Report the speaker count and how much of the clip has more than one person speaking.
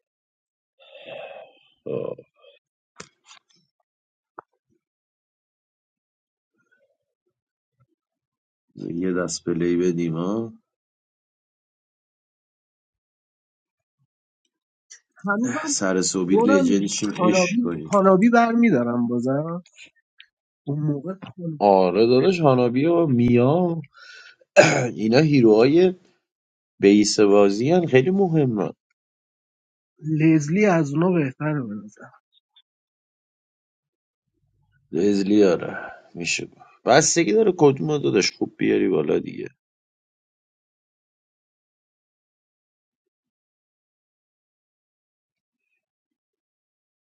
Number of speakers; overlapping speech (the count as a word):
two, about 3%